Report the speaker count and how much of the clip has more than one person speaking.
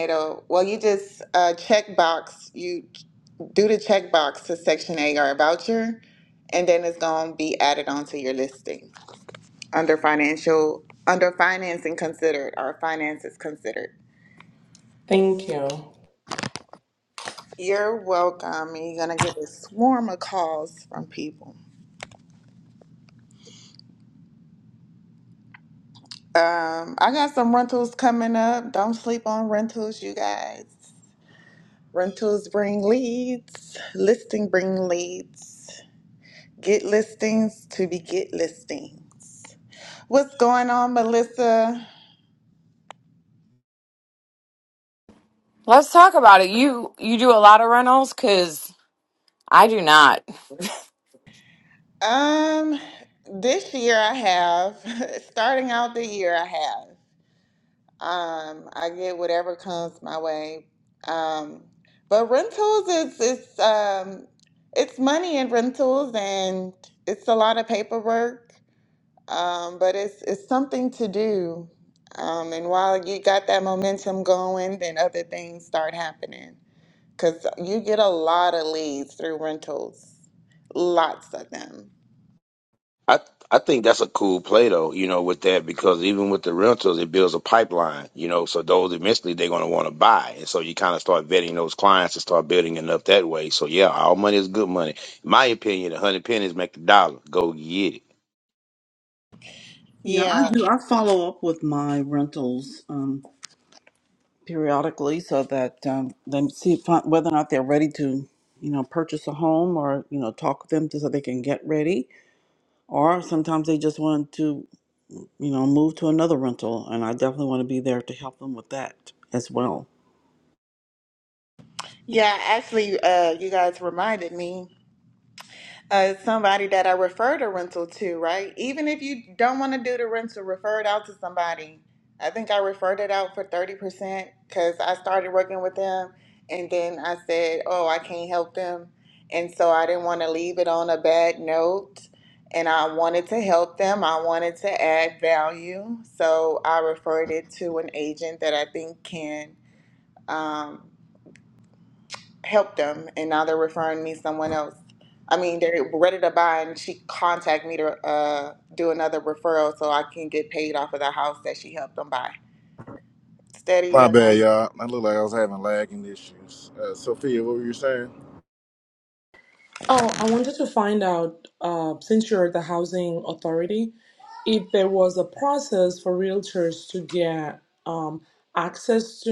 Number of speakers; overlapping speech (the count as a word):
six, about 1%